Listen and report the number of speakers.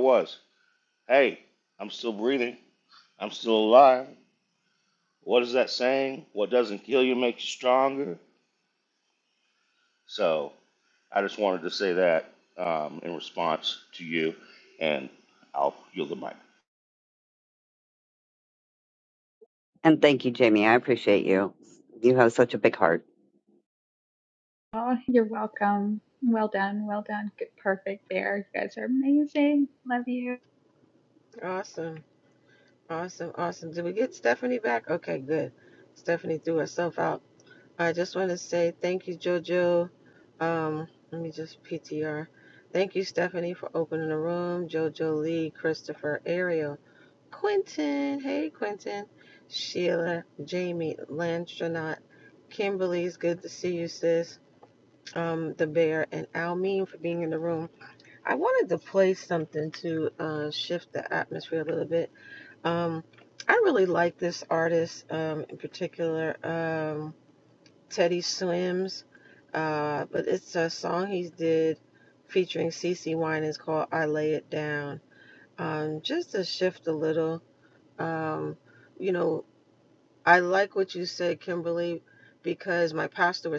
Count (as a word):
four